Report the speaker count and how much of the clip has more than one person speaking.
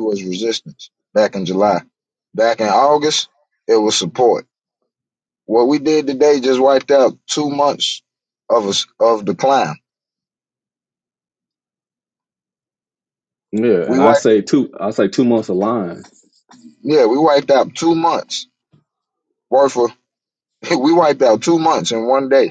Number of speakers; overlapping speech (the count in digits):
2, about 2%